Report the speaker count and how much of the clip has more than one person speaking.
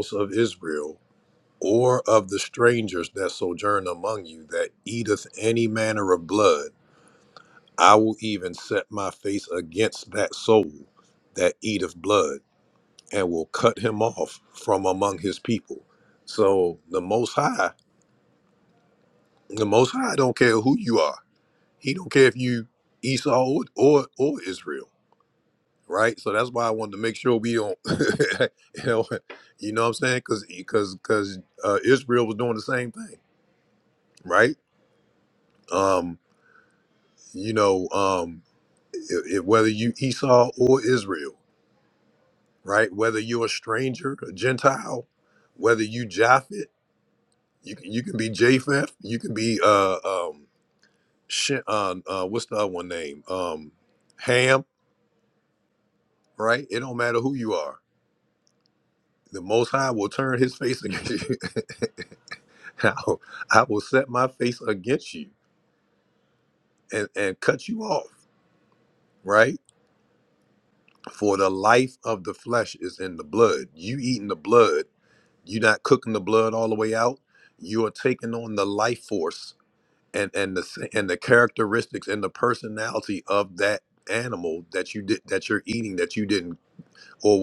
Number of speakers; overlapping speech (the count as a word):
one, no overlap